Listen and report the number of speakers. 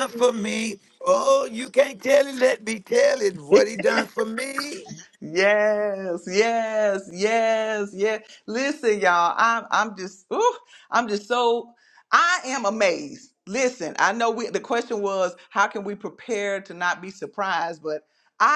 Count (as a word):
two